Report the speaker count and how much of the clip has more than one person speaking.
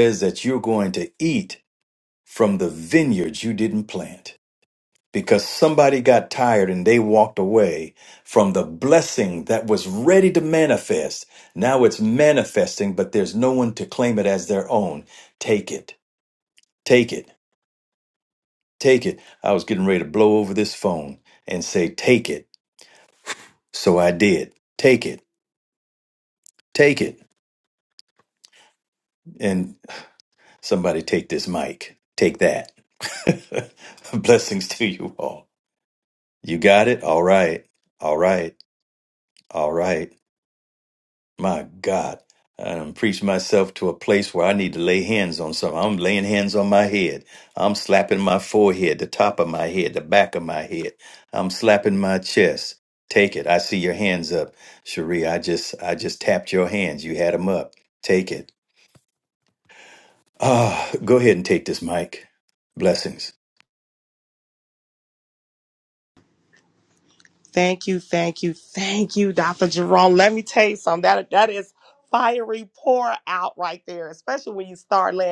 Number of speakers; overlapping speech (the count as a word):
two, no overlap